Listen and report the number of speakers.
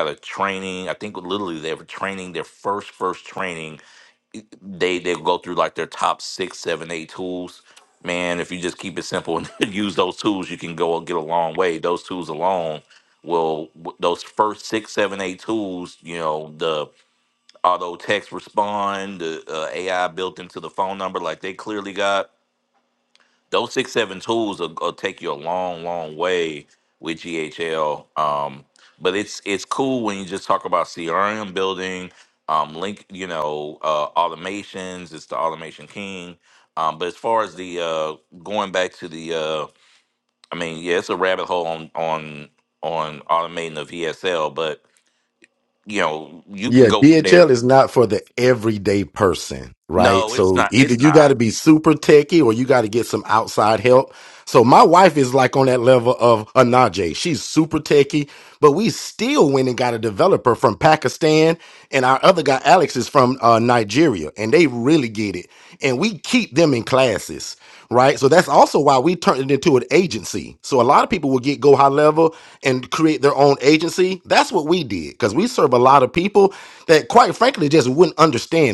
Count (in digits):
2